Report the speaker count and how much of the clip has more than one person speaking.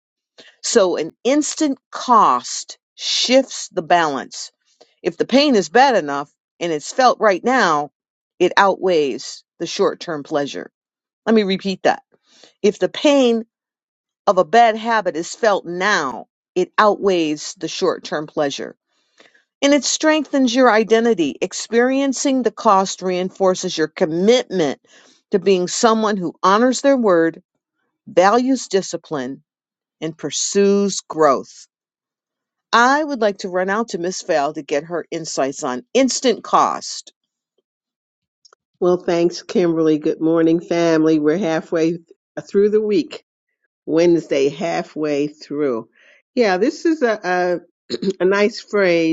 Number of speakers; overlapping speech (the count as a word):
two, no overlap